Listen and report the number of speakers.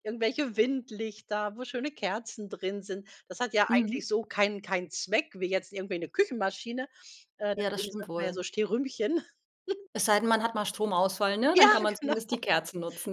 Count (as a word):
two